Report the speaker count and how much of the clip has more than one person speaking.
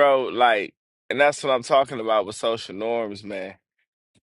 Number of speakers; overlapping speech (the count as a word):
one, no overlap